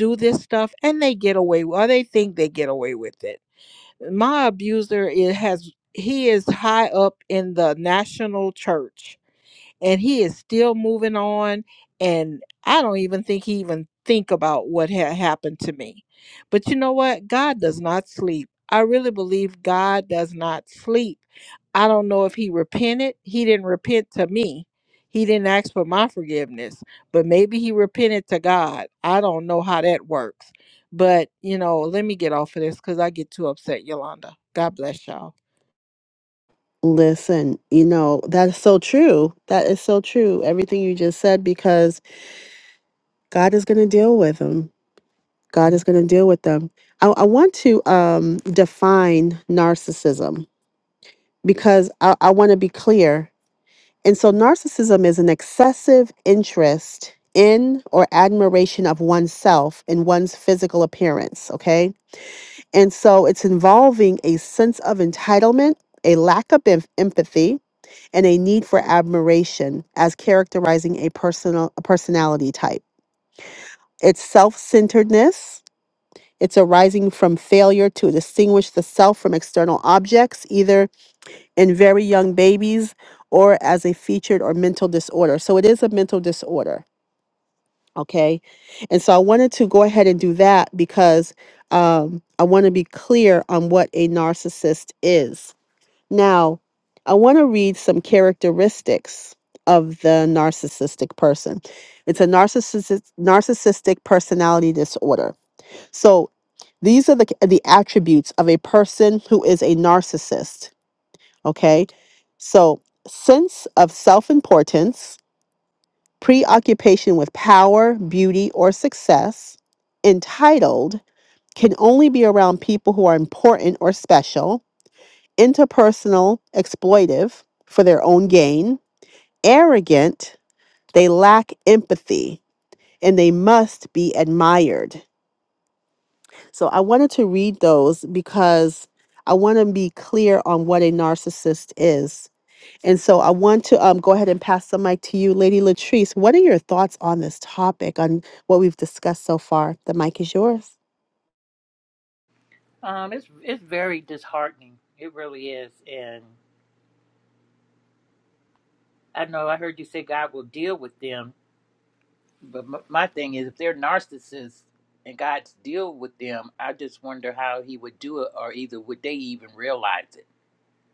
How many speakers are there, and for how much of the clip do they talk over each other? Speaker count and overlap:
3, no overlap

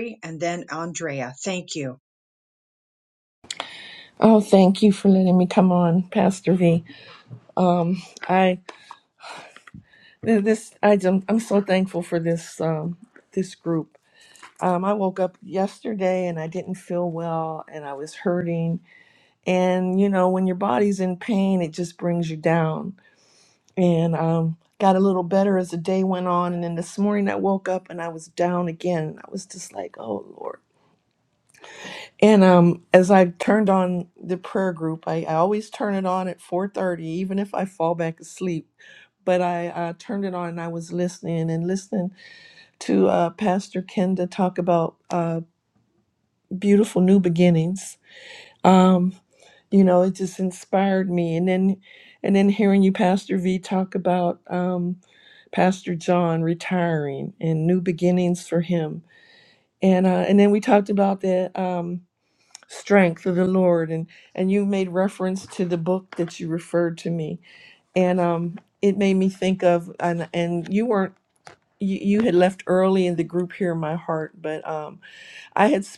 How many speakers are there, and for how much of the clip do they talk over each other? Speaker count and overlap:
2, no overlap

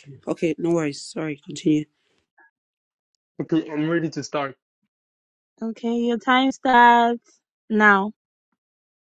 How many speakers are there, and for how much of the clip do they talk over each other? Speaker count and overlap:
3, no overlap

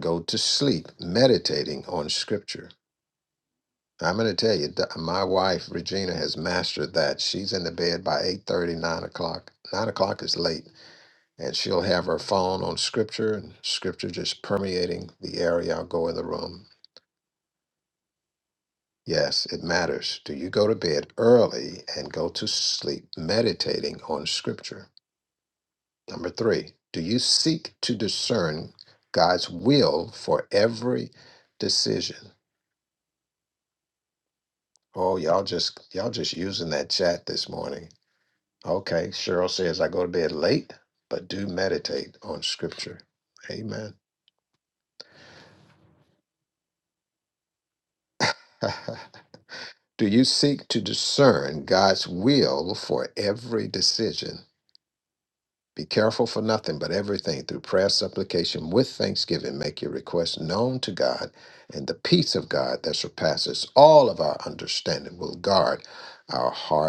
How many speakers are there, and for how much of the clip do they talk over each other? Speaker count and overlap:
1, no overlap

